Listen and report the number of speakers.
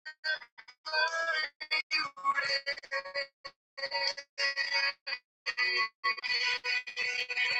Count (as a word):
zero